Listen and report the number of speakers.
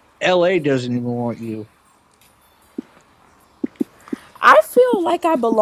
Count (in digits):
2